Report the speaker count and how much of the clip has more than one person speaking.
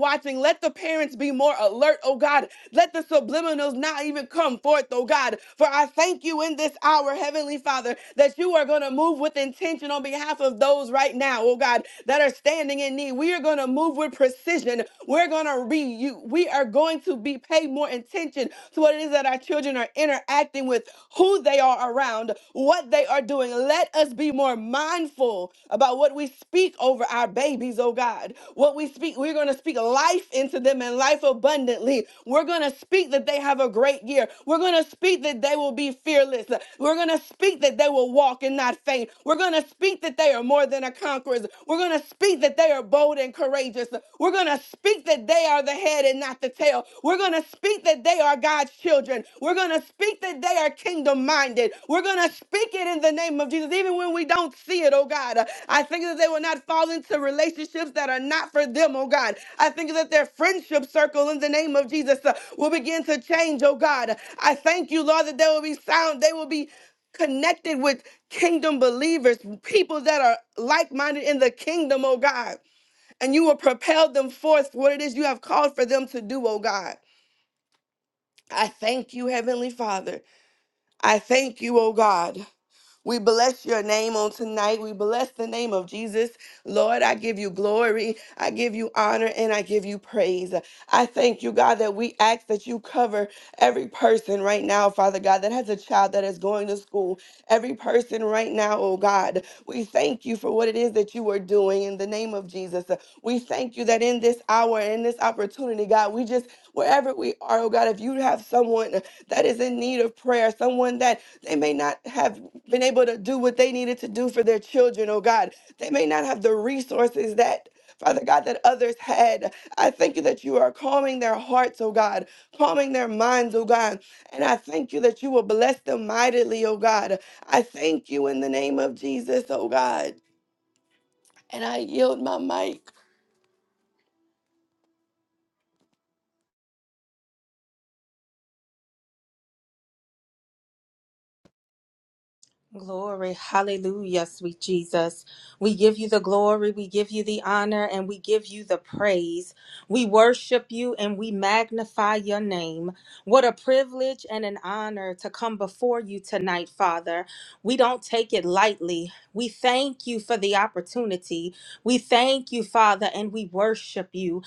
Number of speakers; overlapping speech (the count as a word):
two, no overlap